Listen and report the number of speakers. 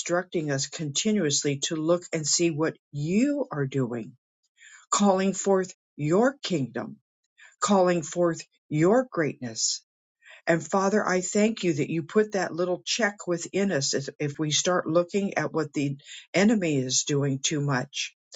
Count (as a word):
one